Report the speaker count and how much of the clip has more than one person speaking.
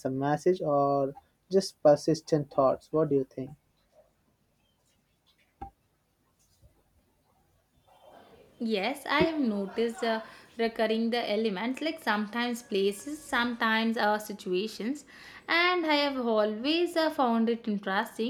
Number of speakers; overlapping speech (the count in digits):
2, no overlap